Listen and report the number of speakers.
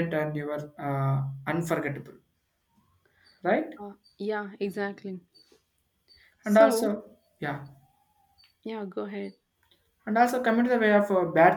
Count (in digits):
2